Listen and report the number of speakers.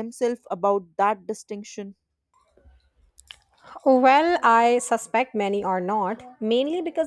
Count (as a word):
two